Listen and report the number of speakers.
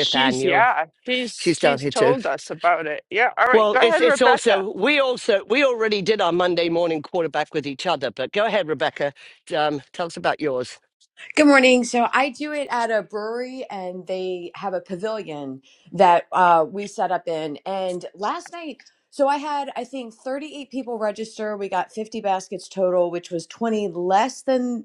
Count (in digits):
3